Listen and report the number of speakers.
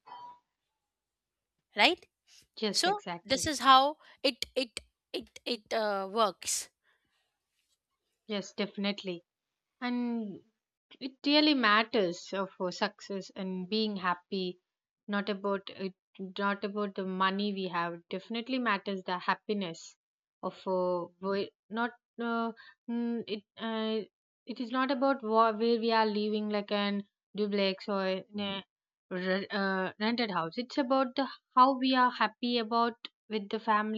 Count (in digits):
2